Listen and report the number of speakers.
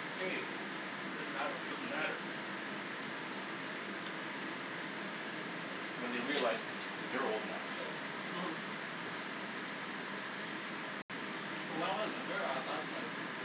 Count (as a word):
two